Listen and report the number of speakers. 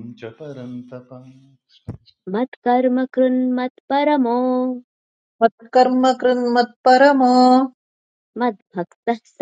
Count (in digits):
3